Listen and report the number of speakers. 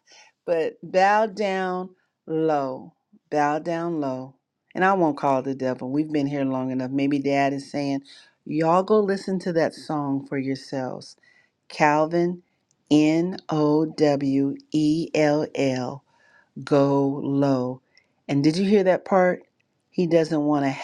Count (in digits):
1